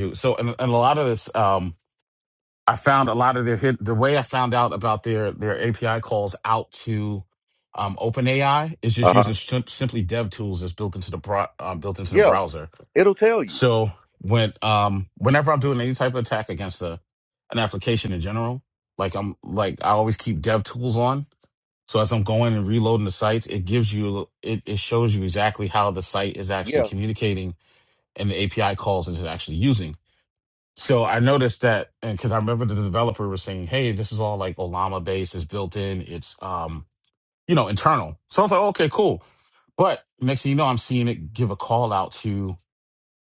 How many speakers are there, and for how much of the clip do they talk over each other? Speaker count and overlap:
2, about 2%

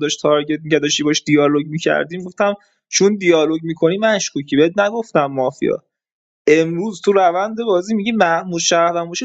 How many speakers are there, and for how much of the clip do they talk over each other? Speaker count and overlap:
1, no overlap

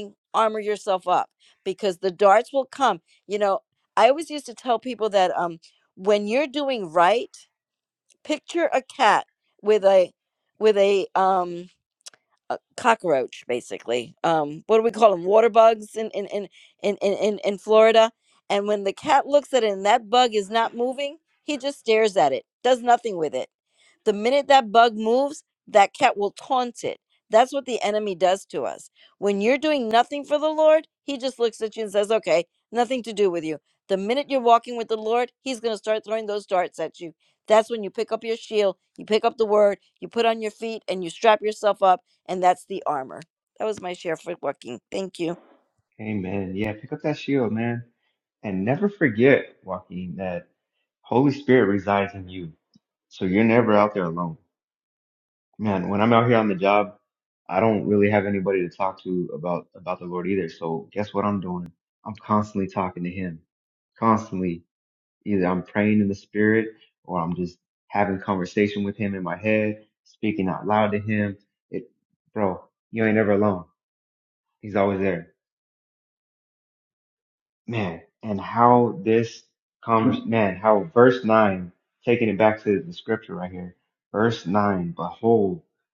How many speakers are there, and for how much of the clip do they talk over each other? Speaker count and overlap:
2, no overlap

